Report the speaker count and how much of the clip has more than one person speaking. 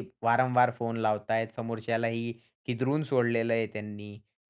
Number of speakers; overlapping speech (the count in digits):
1, no overlap